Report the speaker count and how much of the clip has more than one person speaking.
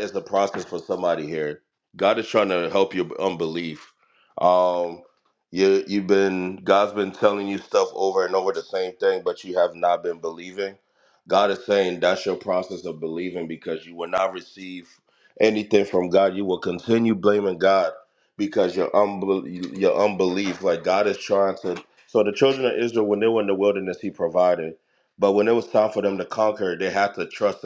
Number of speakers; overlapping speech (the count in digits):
1, no overlap